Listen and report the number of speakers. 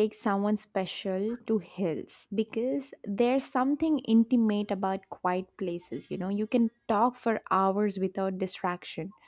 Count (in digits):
1